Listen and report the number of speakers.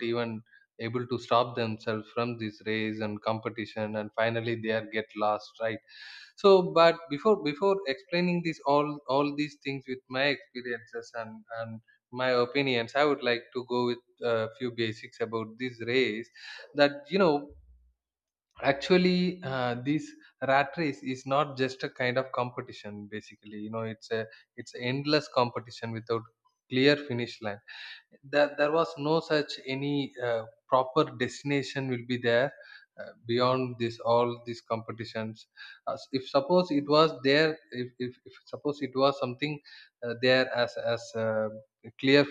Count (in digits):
1